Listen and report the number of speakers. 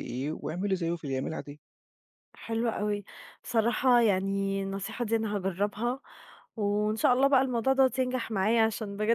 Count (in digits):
2